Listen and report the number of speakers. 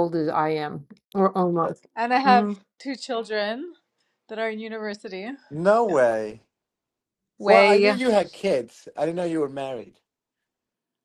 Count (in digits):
3